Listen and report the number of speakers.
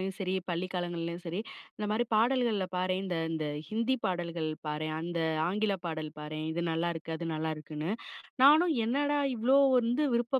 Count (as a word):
one